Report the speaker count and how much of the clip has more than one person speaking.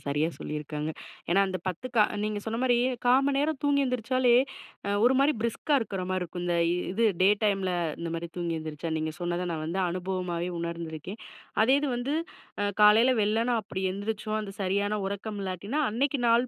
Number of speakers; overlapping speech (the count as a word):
one, no overlap